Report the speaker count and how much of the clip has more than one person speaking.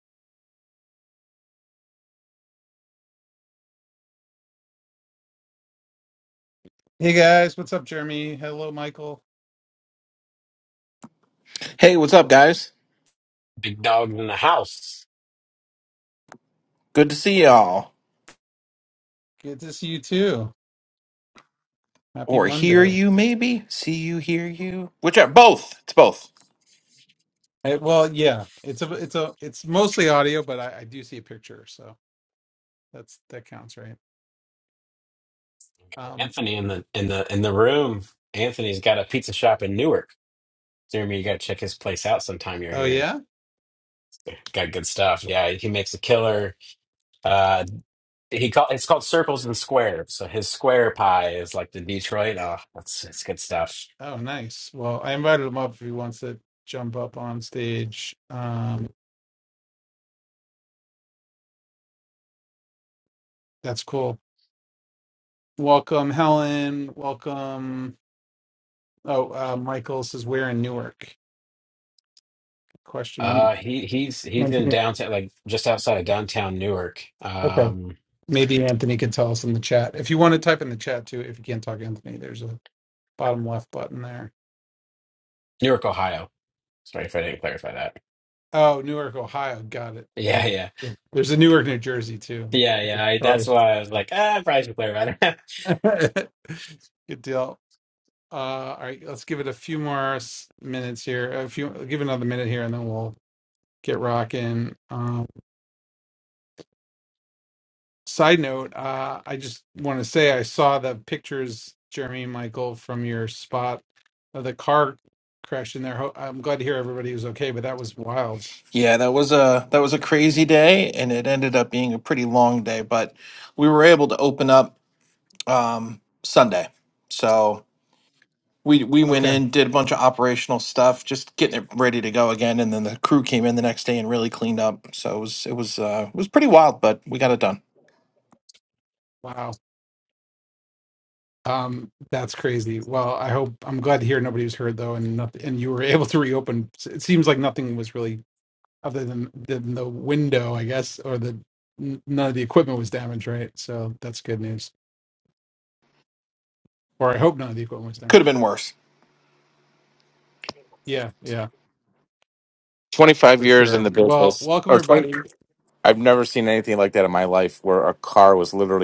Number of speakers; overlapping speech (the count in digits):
4, about 3%